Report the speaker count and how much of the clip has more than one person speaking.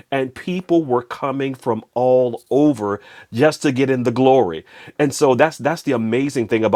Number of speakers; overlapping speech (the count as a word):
one, no overlap